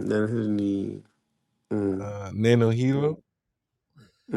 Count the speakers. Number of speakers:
2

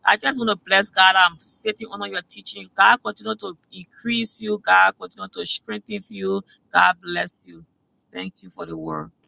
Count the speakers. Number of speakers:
1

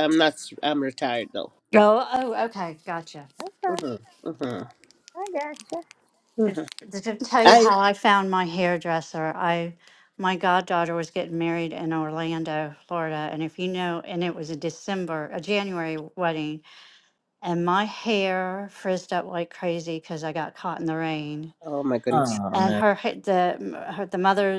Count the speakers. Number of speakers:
3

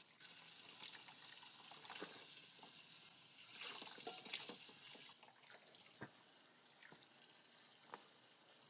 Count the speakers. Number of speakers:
0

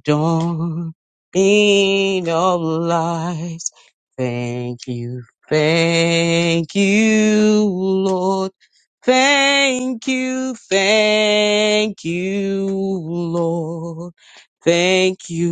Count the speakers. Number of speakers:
1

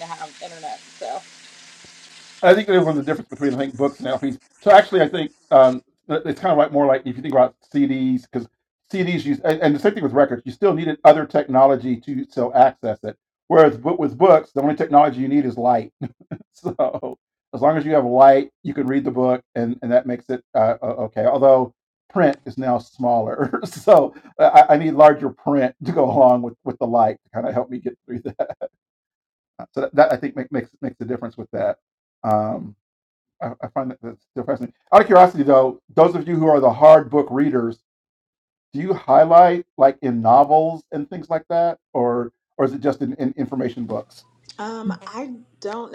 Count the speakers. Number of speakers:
3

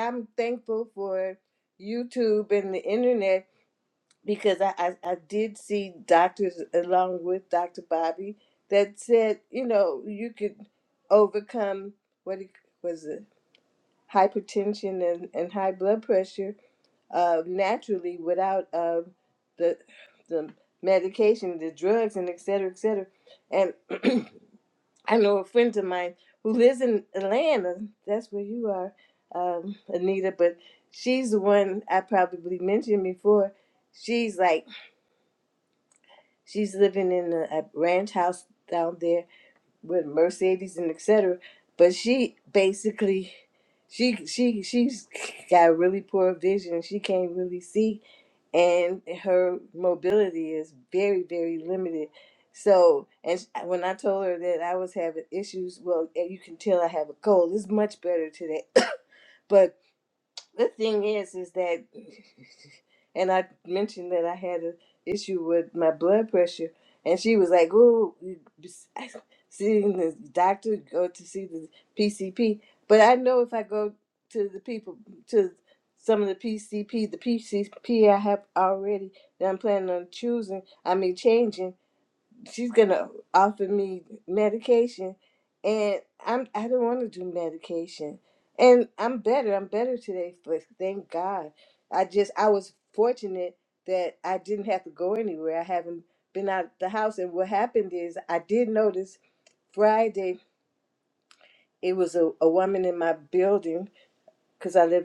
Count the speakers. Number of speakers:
1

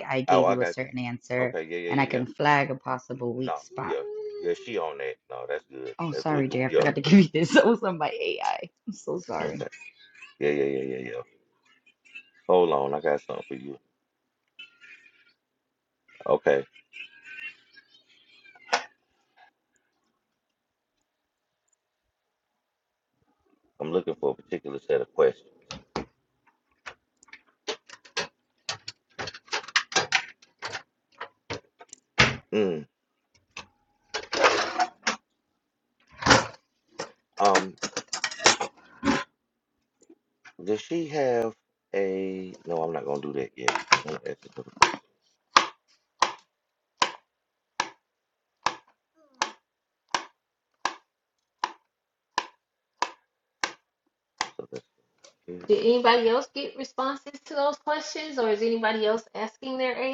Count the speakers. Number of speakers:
3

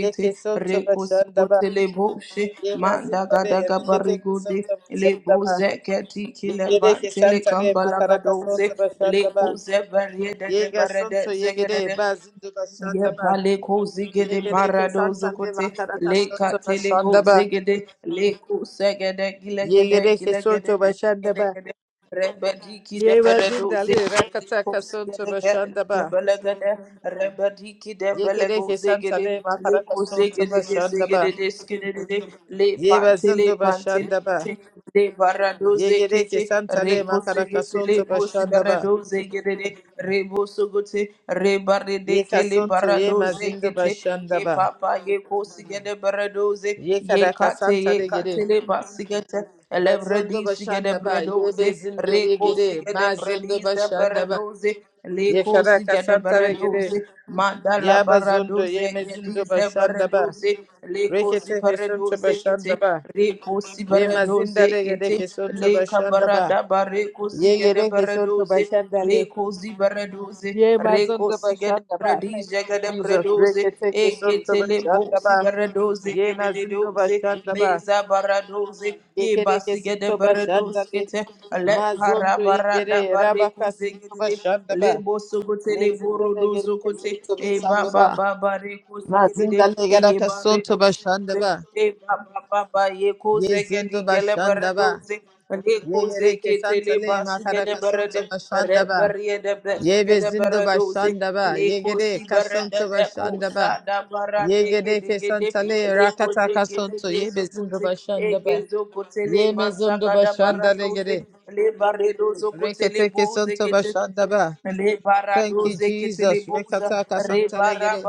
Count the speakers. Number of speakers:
2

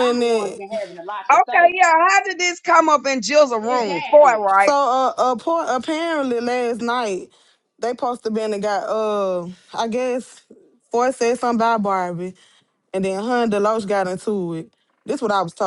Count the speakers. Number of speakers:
3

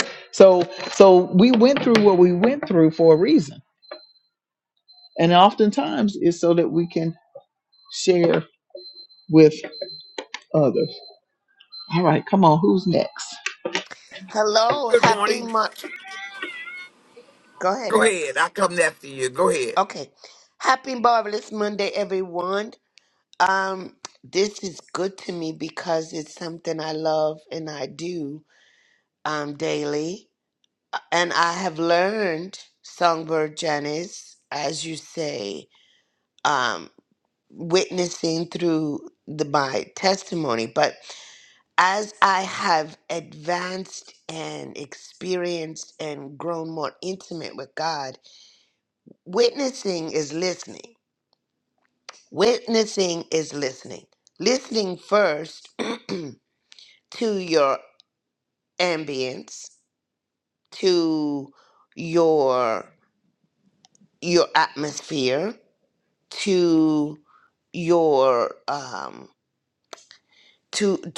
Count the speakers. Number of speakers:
3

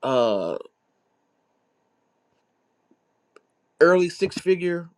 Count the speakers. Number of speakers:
1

